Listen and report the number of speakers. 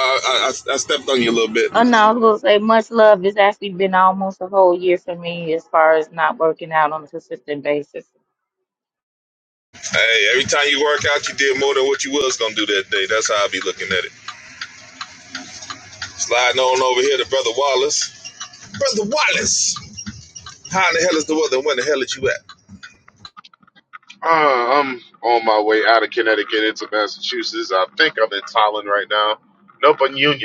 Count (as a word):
three